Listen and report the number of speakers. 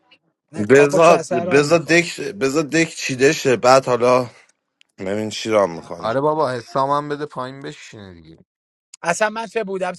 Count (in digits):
3